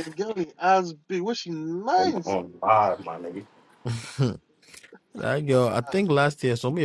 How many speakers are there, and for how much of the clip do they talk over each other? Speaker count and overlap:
three, about 4%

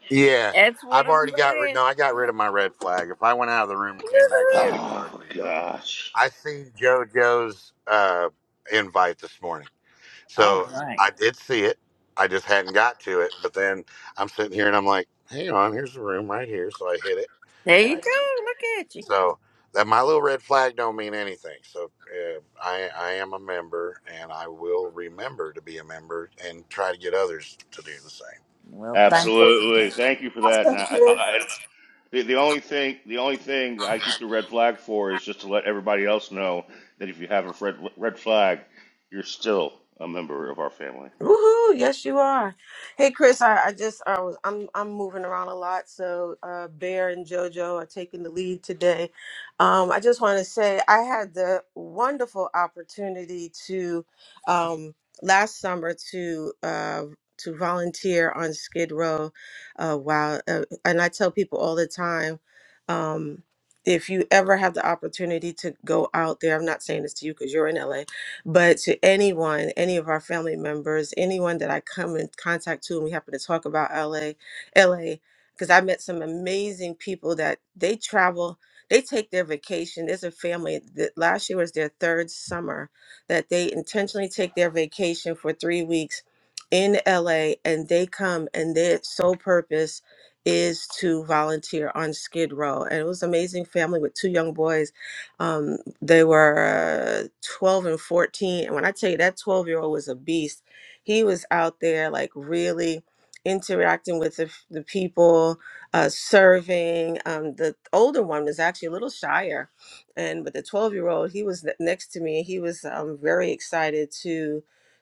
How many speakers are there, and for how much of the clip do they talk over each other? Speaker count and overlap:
four, about 4%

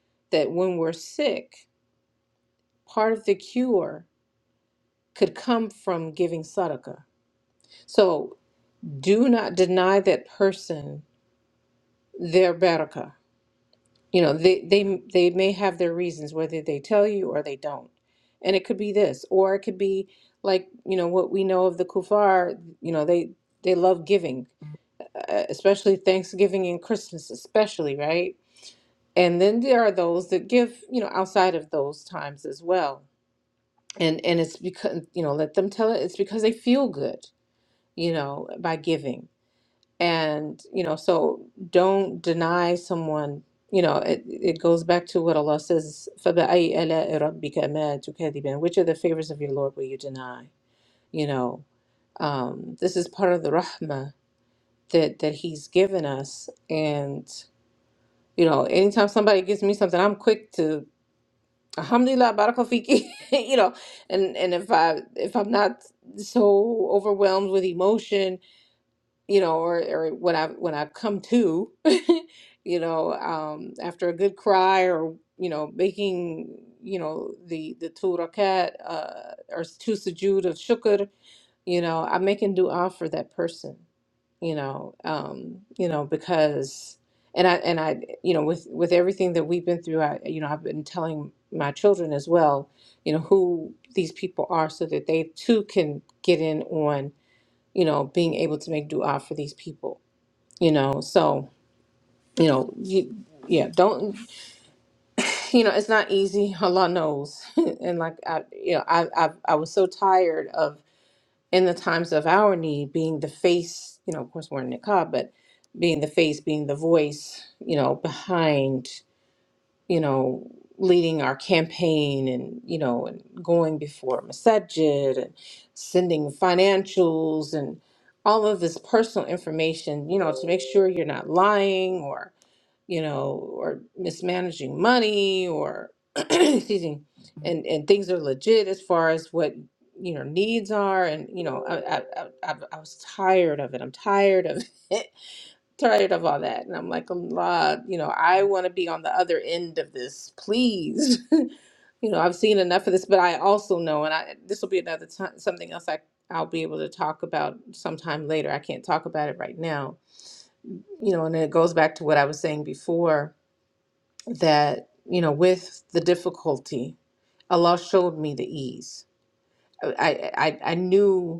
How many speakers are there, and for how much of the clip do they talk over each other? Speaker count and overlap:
one, no overlap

